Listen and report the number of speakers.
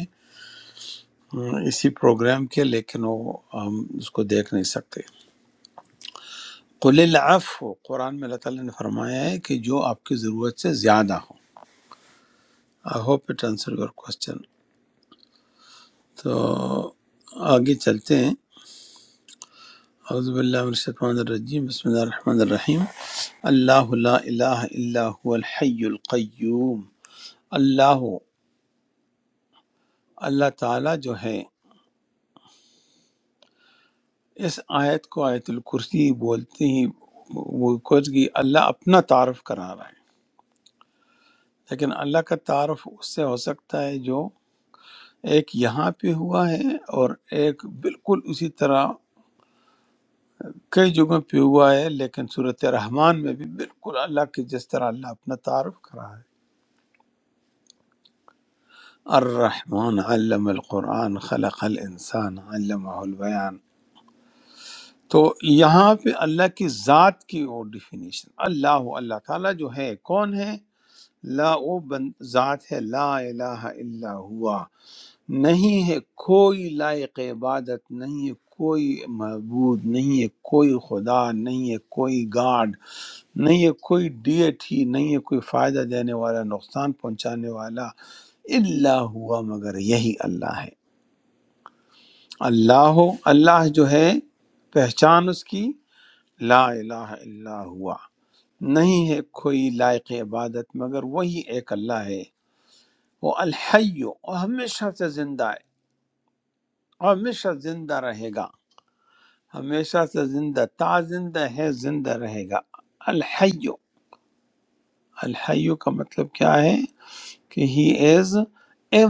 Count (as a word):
one